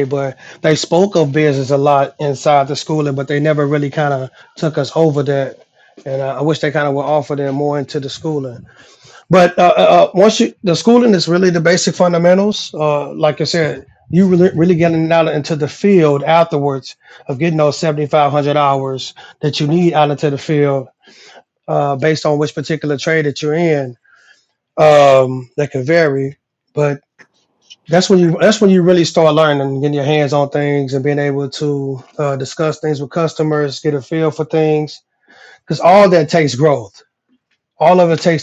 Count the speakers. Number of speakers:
1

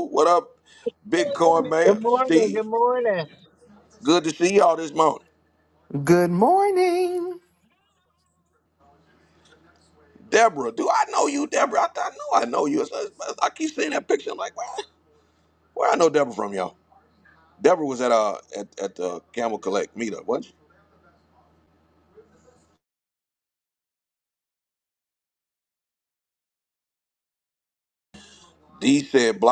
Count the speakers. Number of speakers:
3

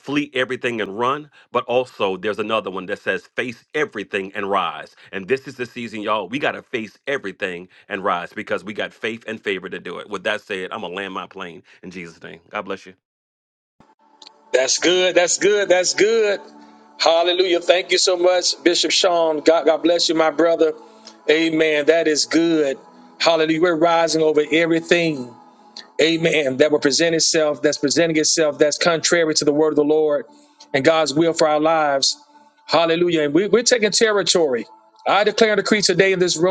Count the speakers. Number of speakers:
2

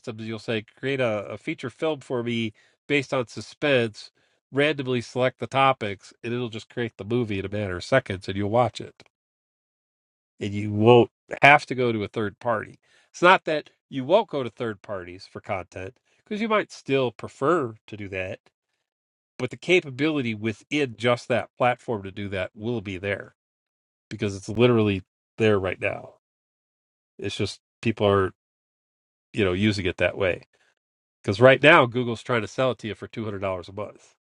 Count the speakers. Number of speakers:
1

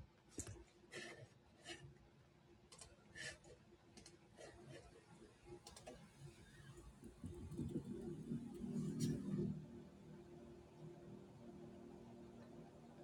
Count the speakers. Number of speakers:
0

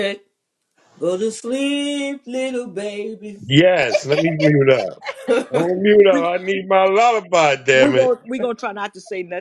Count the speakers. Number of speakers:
3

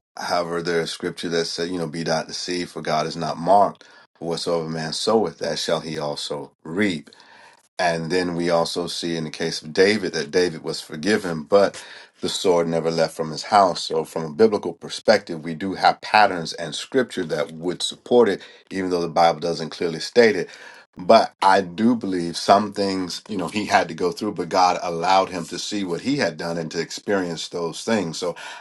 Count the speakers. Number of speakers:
1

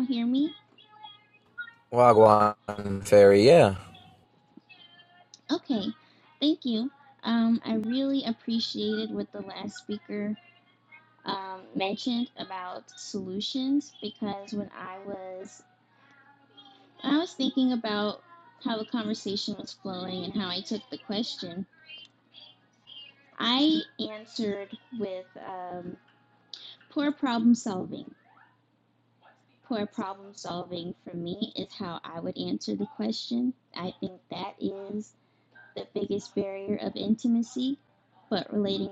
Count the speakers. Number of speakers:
2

